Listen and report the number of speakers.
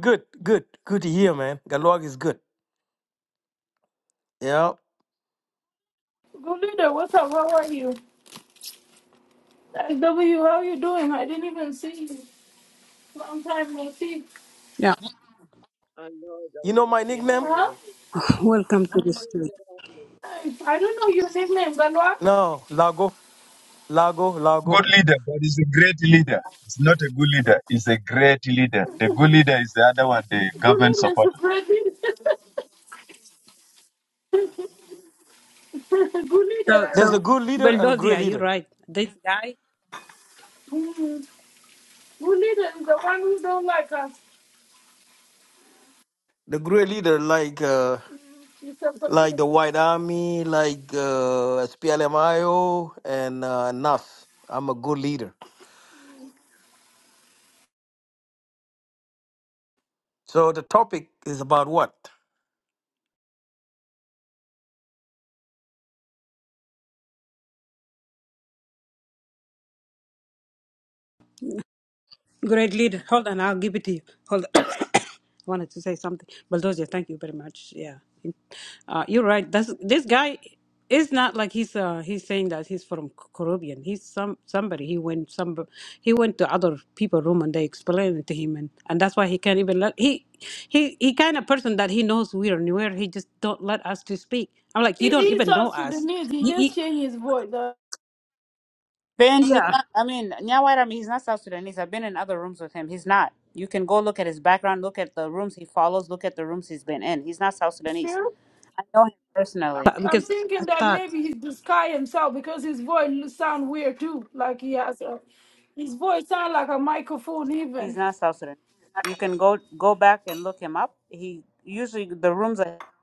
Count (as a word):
six